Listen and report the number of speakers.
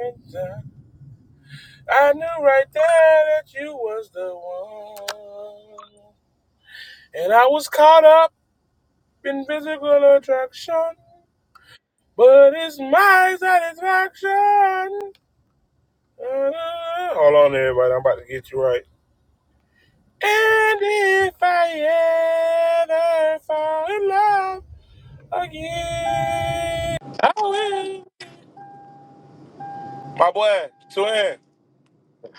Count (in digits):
1